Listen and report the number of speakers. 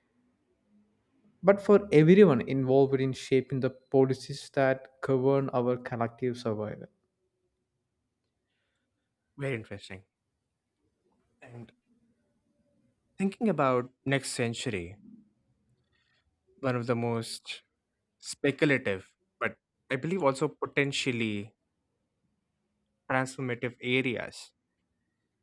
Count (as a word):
two